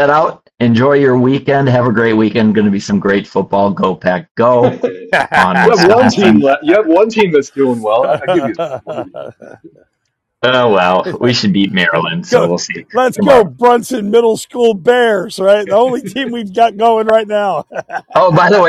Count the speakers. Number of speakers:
three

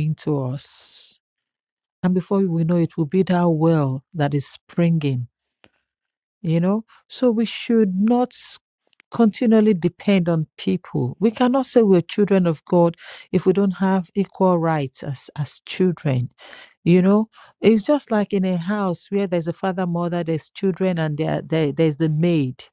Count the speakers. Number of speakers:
one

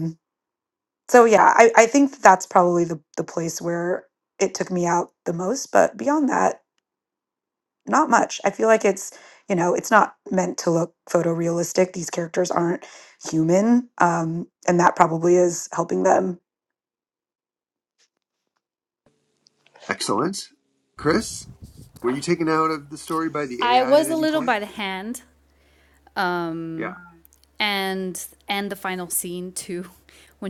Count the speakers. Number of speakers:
three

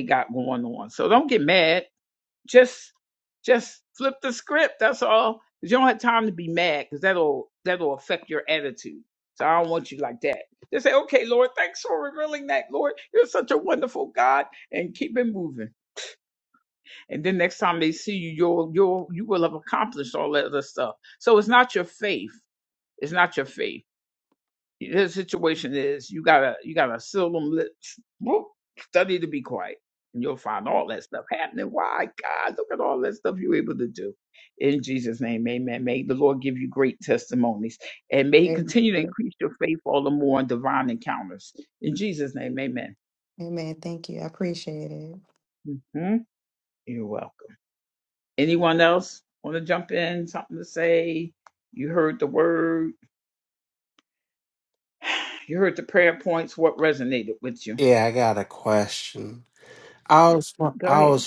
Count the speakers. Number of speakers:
three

